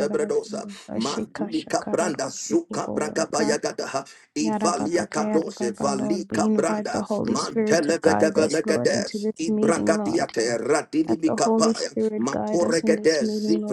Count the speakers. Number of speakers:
2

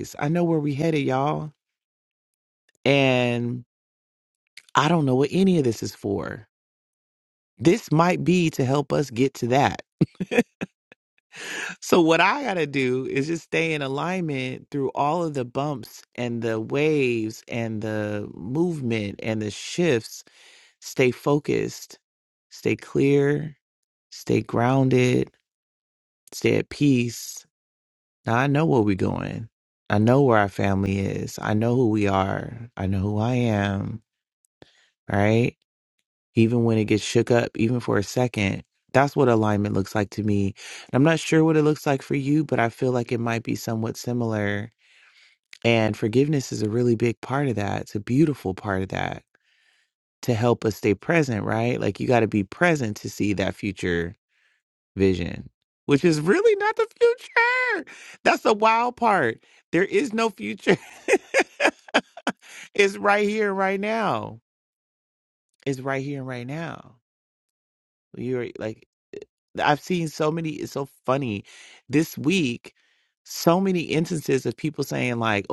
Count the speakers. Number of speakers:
1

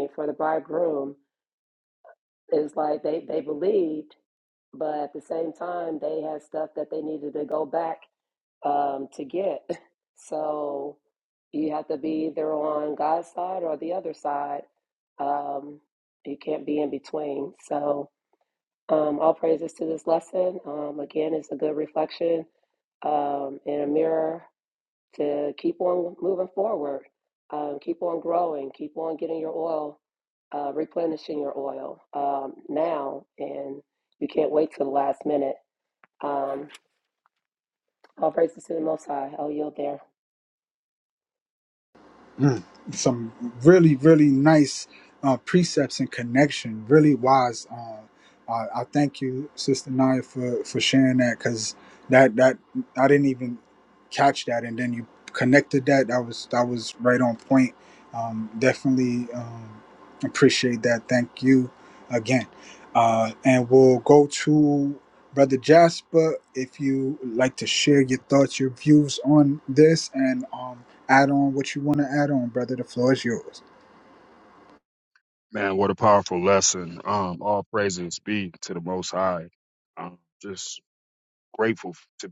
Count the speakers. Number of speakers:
3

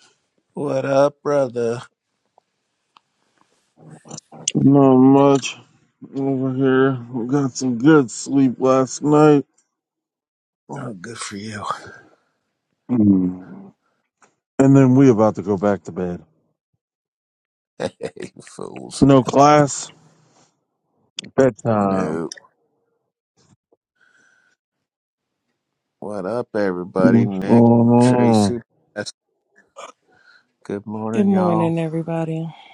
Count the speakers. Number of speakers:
3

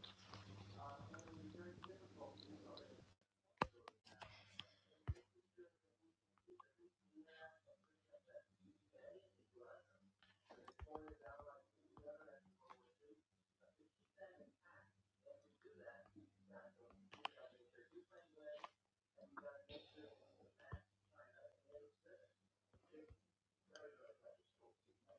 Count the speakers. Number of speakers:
0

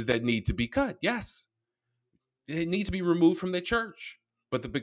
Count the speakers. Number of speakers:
1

